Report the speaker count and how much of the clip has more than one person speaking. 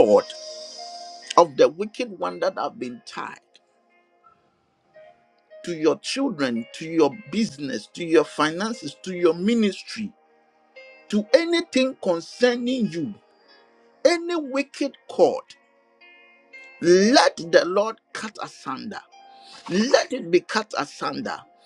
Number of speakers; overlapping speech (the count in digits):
1, no overlap